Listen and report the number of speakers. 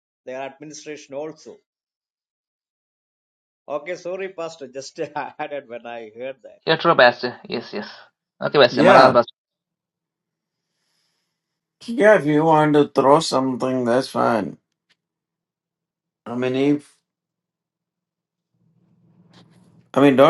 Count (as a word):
three